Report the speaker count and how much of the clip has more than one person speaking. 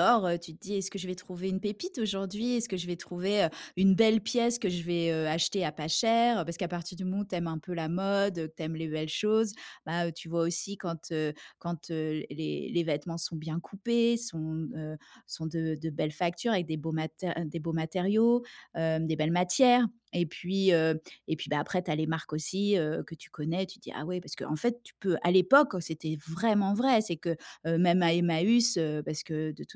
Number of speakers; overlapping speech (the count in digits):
1, no overlap